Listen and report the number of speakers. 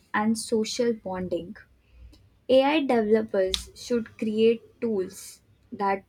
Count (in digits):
1